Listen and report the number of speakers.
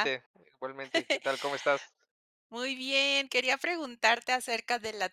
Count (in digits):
2